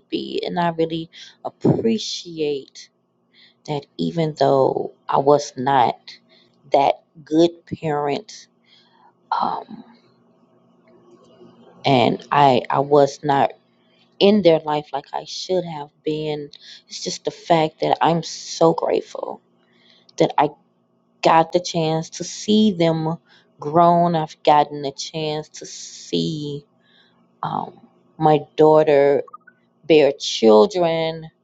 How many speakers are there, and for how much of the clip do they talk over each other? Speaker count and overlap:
1, no overlap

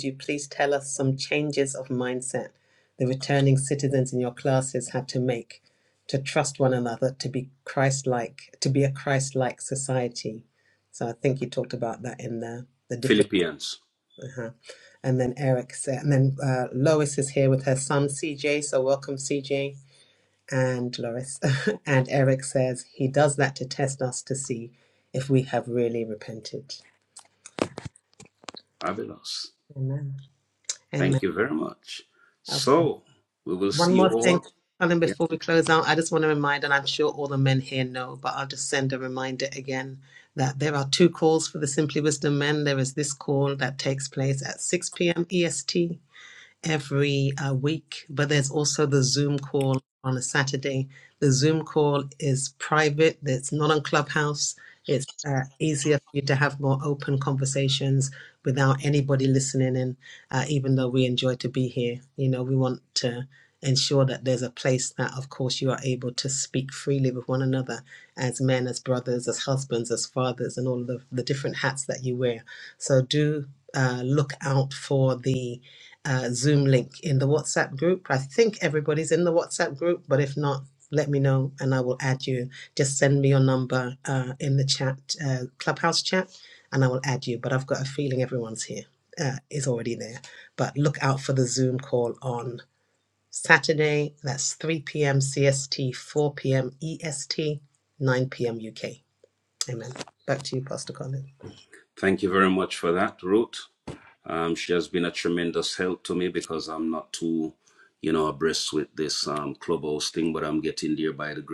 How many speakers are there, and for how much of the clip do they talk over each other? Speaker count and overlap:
2, about 1%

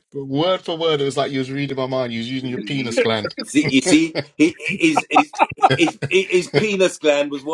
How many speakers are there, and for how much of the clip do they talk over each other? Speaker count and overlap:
2, about 12%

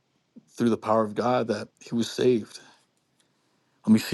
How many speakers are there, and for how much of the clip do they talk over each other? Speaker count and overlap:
1, no overlap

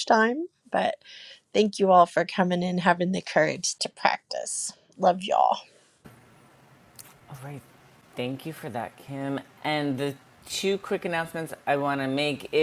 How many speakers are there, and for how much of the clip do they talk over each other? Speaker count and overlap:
2, no overlap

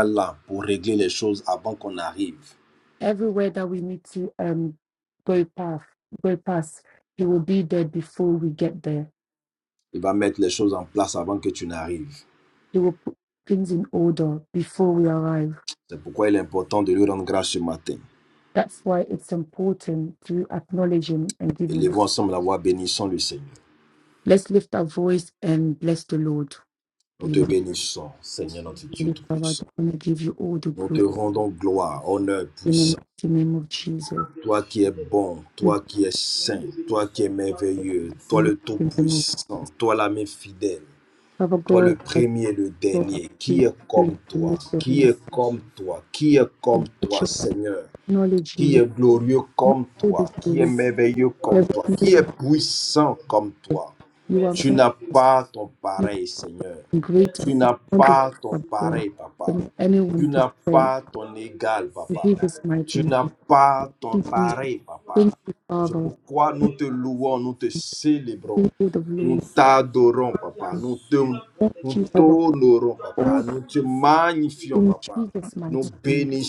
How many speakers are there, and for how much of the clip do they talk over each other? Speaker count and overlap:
2, about 18%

